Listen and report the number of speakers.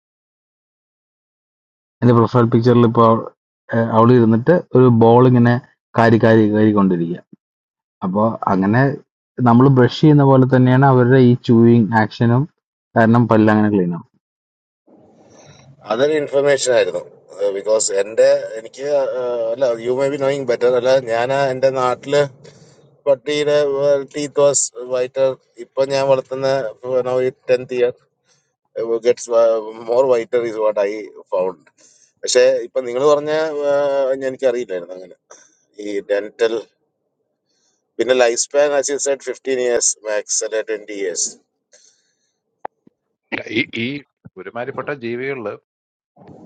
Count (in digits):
3